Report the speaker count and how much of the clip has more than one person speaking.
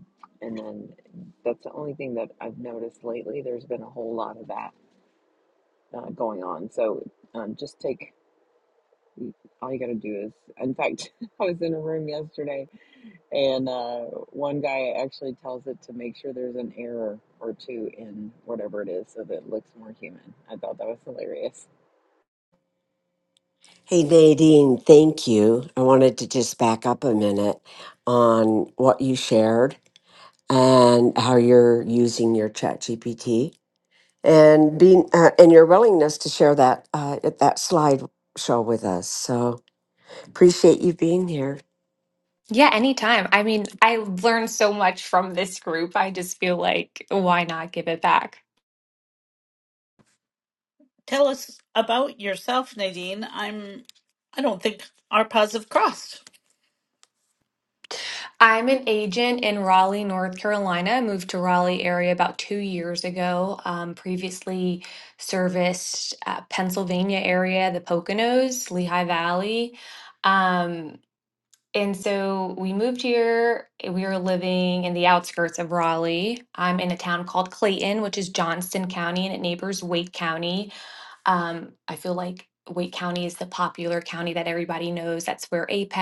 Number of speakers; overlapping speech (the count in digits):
4, no overlap